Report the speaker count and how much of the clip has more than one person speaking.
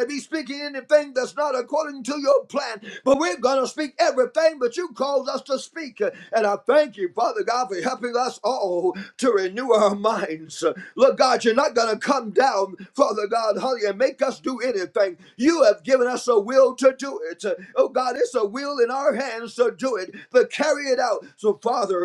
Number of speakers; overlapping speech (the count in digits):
1, no overlap